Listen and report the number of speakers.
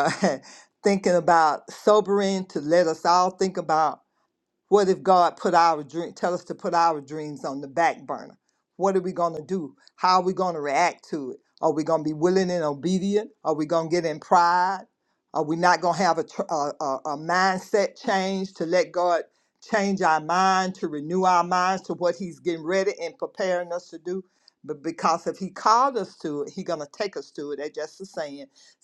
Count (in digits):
1